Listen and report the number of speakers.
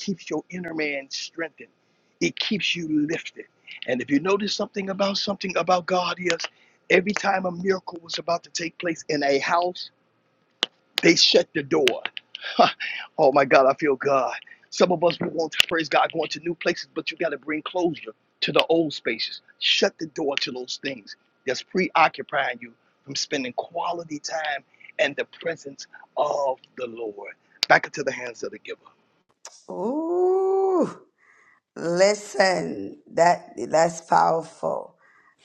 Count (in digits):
2